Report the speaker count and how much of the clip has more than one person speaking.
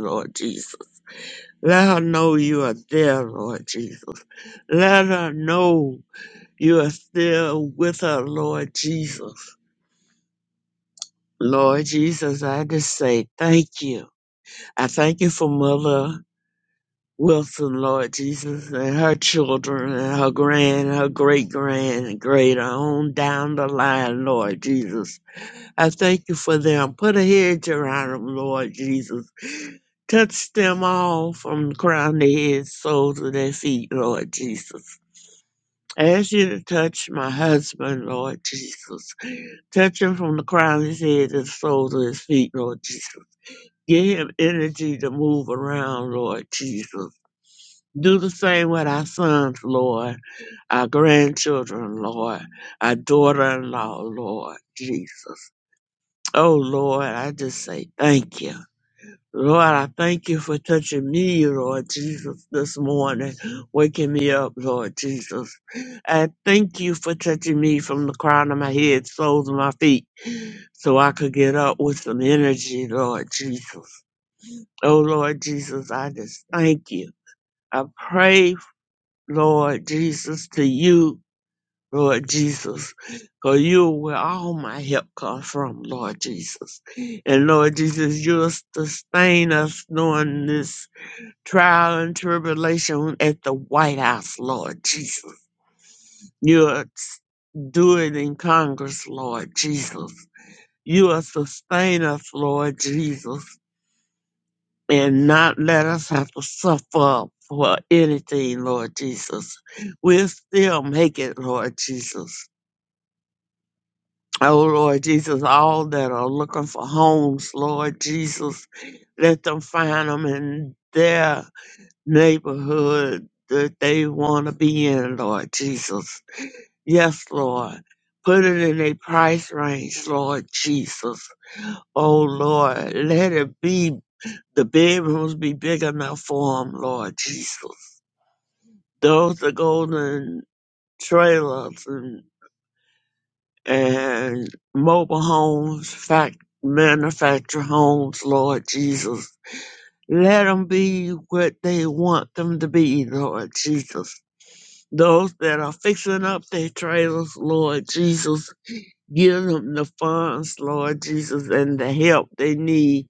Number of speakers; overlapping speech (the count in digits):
1, no overlap